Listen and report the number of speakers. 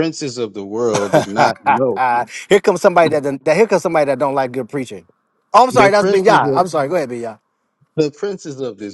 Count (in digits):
2